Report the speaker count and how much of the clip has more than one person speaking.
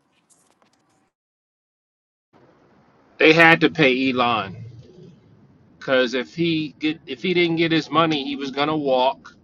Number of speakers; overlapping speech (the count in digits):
1, no overlap